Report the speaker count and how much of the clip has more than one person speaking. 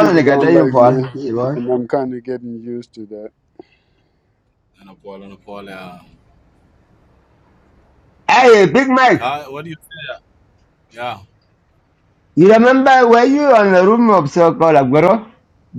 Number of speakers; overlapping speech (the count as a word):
three, about 8%